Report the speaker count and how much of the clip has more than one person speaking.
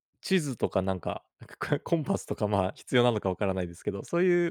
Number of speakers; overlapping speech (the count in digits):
1, no overlap